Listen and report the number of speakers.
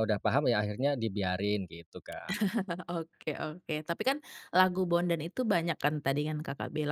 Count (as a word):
two